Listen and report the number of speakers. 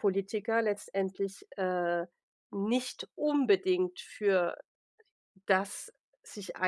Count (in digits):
1